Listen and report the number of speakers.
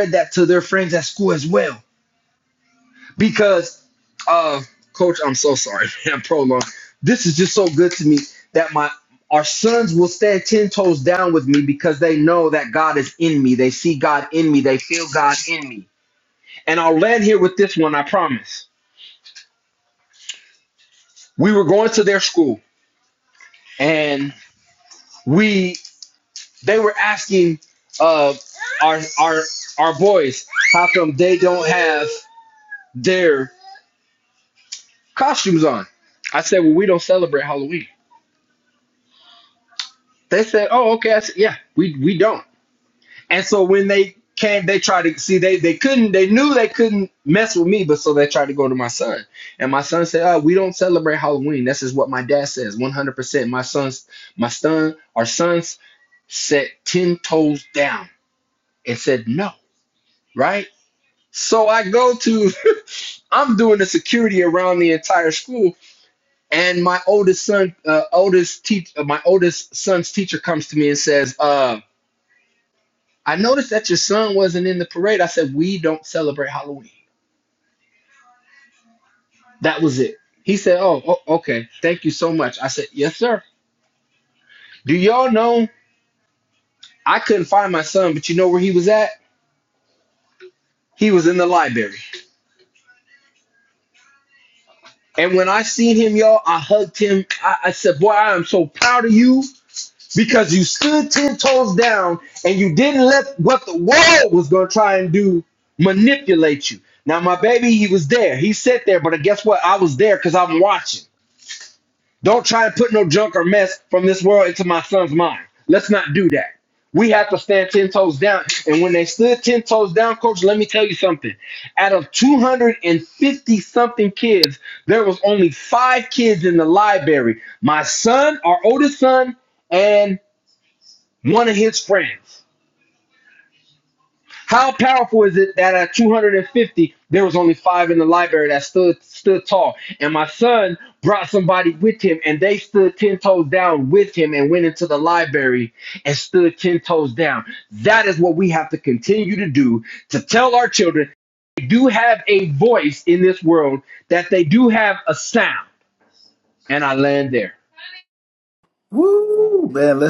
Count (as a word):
two